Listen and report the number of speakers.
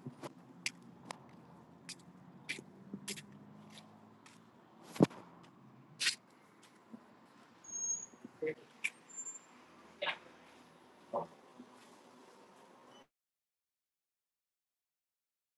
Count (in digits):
0